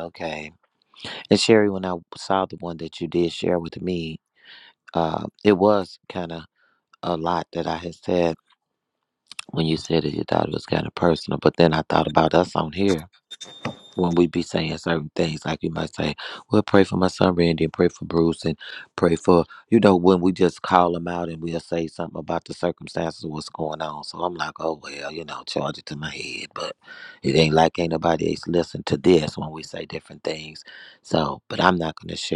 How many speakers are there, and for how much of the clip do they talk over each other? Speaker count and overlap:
one, no overlap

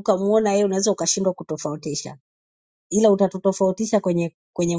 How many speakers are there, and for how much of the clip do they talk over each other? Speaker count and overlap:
one, no overlap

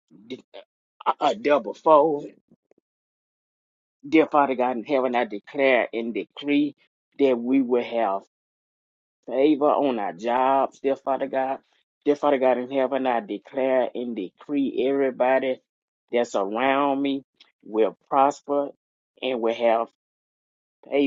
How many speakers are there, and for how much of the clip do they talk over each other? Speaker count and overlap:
one, no overlap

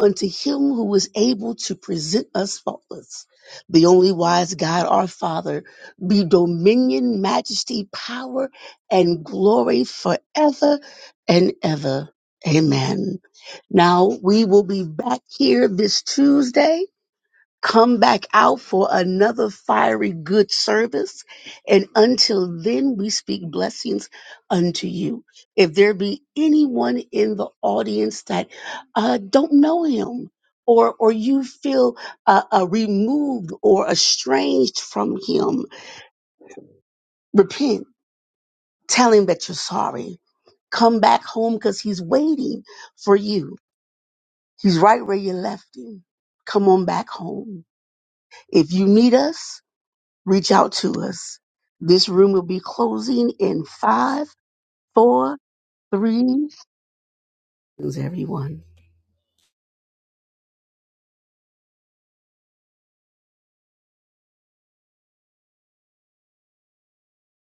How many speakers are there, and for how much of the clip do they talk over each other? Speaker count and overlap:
one, no overlap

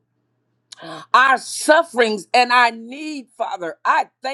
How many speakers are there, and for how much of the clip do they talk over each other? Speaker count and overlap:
one, no overlap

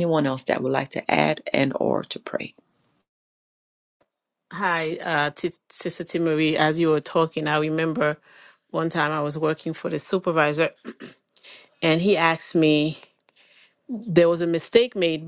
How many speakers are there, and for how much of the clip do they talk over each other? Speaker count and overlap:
two, no overlap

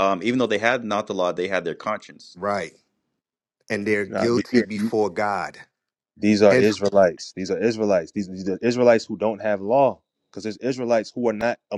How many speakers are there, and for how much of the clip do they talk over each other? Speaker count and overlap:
three, about 9%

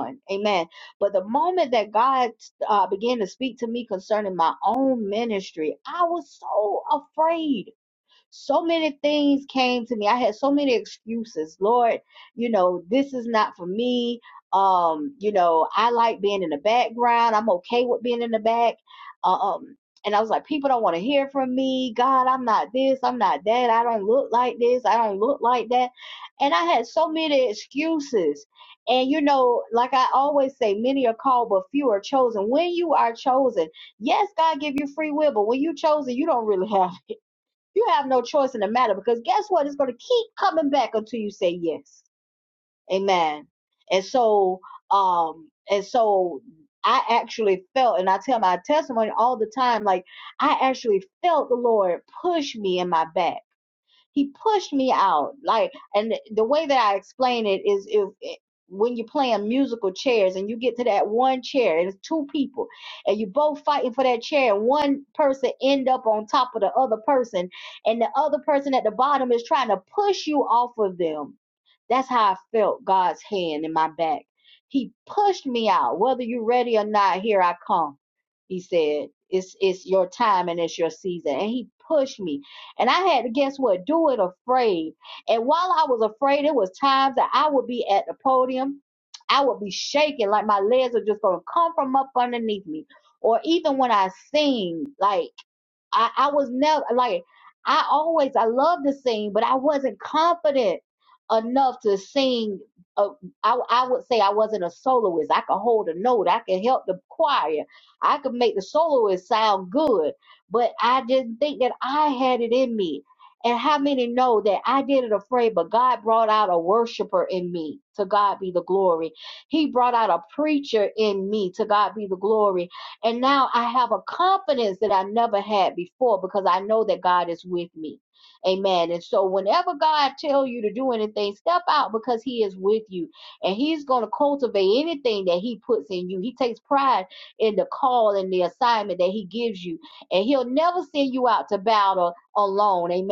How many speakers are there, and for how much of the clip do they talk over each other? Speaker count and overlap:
one, no overlap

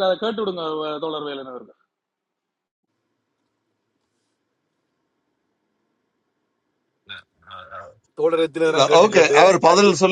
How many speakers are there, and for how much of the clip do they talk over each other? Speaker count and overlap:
three, about 8%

